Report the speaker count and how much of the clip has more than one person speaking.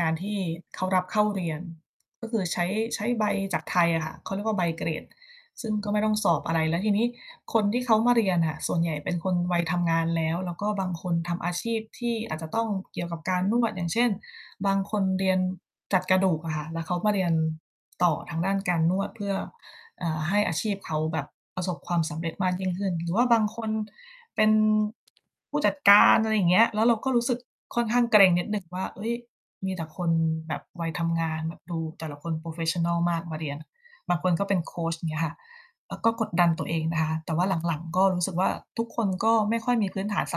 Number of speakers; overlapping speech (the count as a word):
one, no overlap